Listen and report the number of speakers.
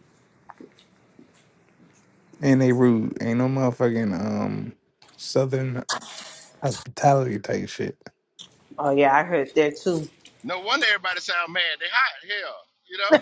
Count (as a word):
three